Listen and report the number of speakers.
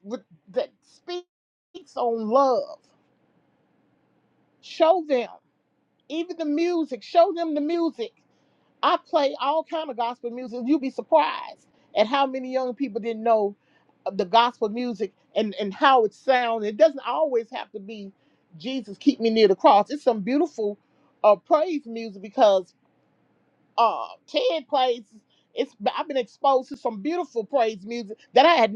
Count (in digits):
1